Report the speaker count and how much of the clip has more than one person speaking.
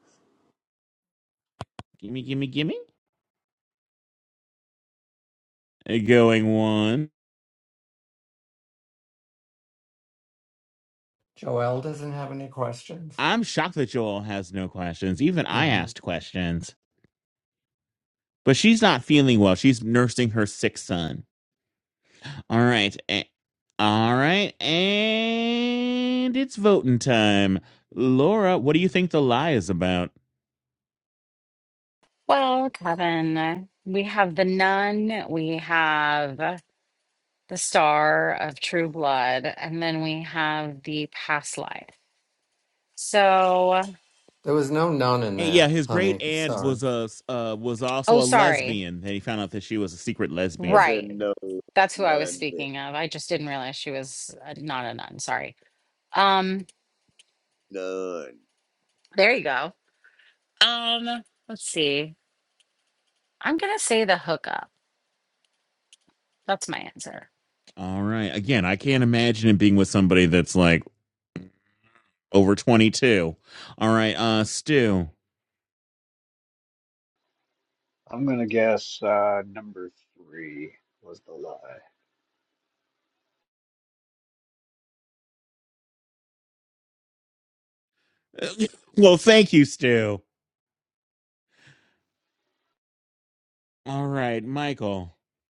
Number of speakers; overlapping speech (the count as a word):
five, about 4%